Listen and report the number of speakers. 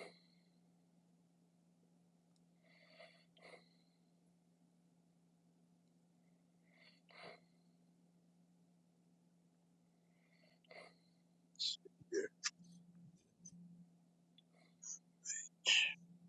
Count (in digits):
0